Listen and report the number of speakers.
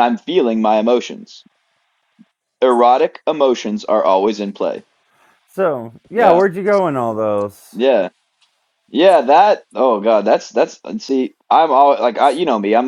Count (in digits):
2